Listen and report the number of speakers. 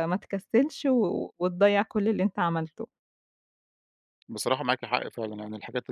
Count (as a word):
two